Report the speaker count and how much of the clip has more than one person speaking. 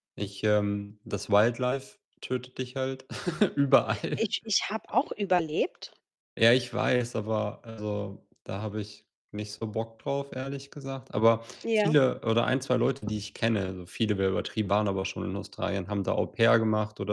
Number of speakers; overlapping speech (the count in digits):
2, about 2%